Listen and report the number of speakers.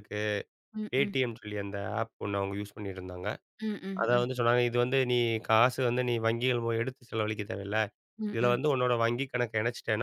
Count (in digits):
2